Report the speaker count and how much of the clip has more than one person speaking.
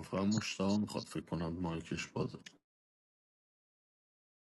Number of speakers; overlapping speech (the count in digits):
1, no overlap